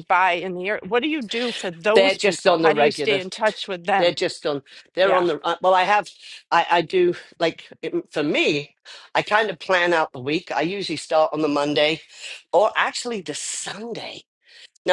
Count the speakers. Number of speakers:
two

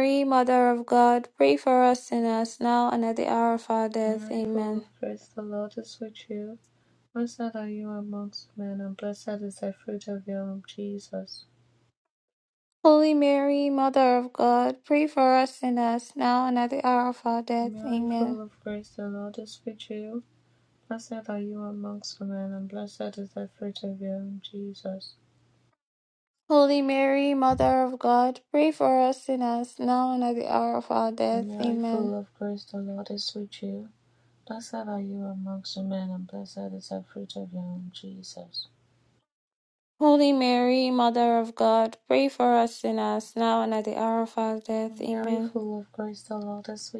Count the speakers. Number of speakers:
two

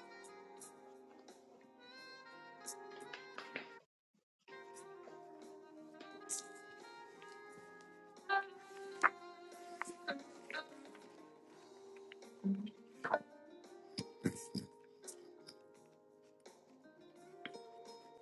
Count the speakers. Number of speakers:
zero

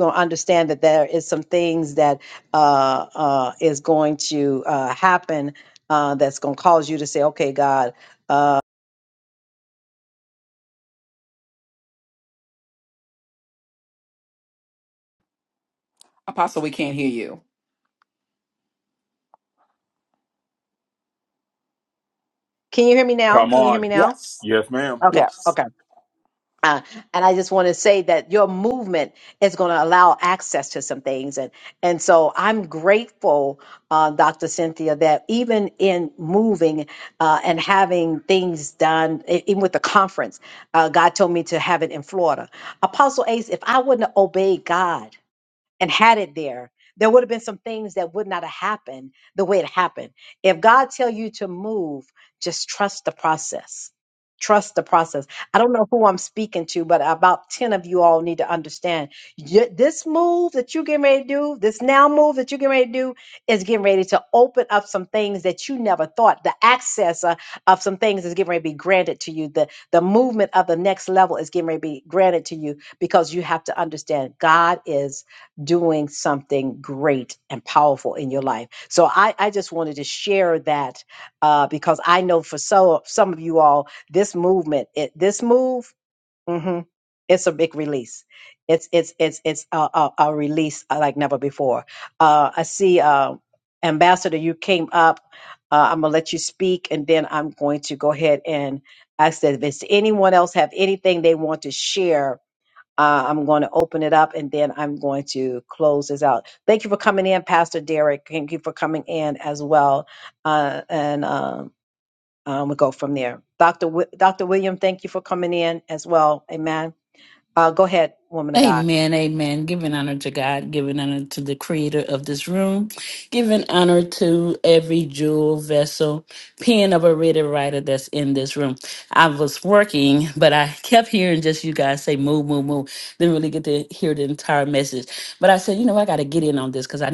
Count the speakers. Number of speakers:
four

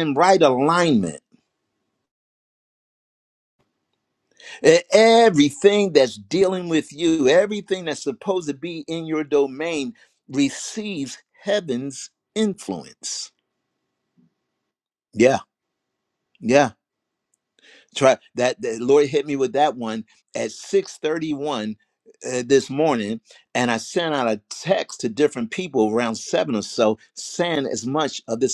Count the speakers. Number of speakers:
one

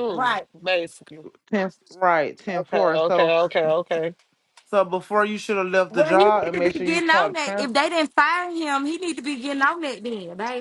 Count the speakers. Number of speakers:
three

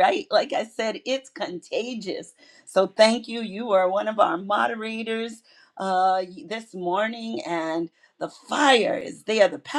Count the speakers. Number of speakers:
one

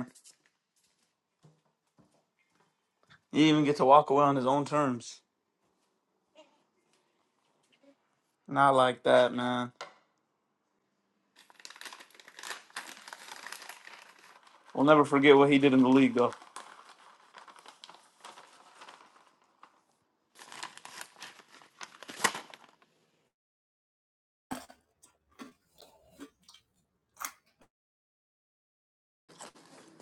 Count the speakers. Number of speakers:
one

